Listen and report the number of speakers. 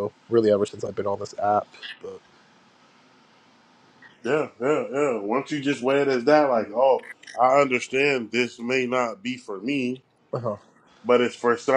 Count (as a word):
two